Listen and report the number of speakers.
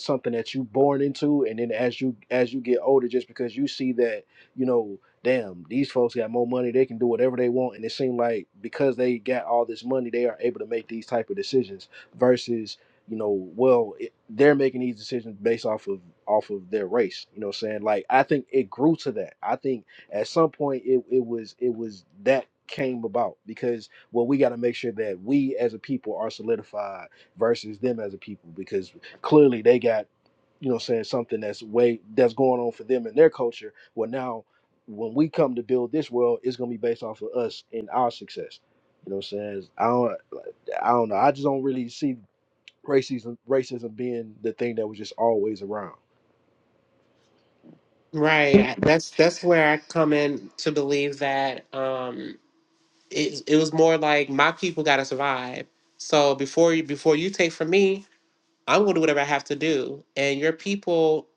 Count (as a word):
two